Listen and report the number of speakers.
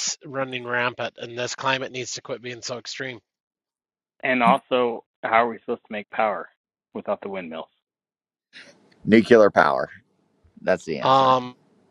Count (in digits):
3